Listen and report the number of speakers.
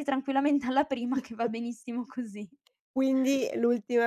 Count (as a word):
two